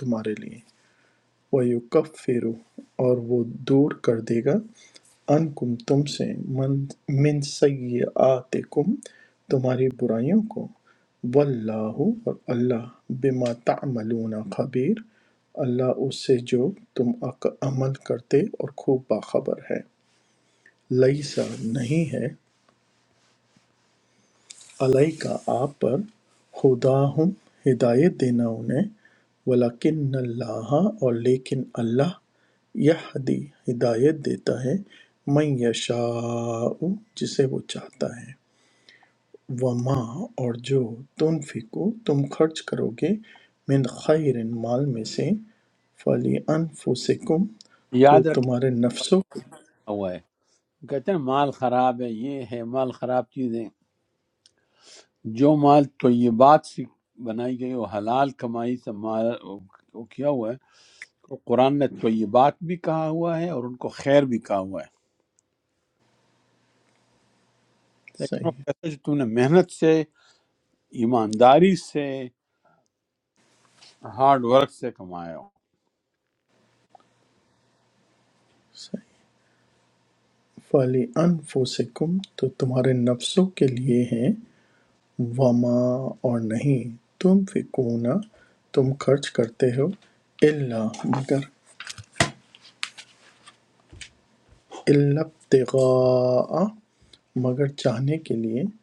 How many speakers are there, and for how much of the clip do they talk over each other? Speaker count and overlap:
2, about 1%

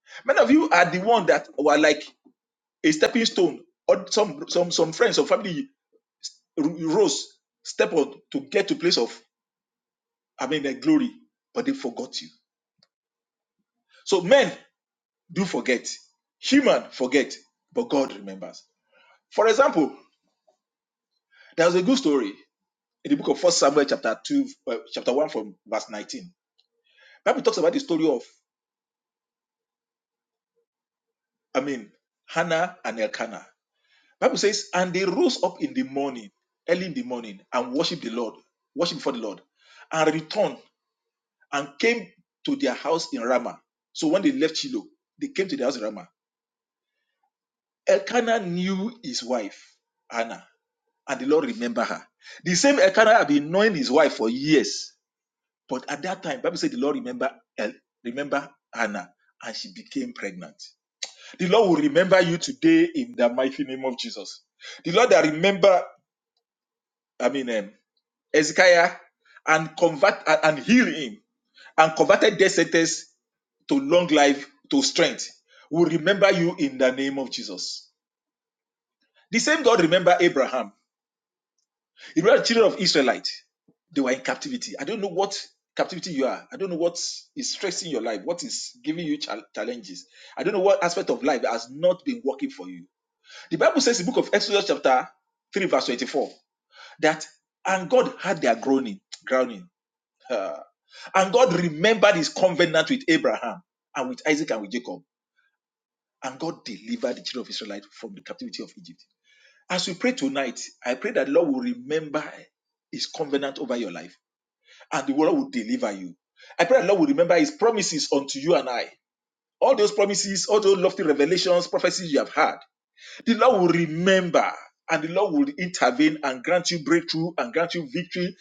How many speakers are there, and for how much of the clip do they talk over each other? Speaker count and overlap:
1, no overlap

